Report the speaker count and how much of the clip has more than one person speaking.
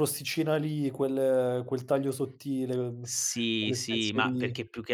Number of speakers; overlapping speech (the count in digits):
2, about 19%